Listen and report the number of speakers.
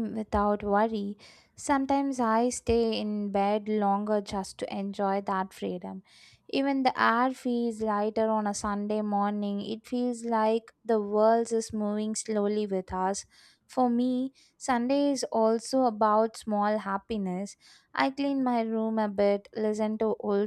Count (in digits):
1